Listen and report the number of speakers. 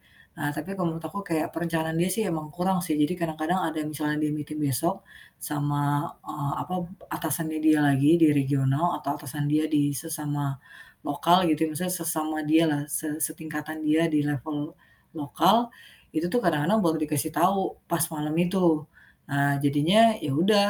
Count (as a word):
one